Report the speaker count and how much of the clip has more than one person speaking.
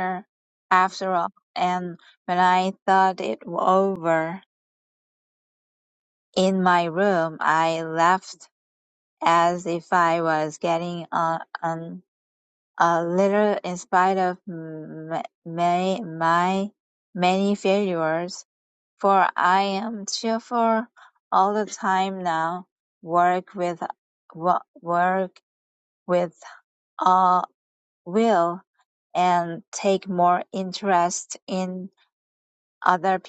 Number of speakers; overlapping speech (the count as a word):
one, no overlap